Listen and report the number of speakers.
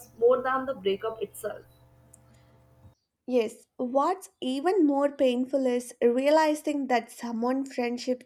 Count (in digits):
2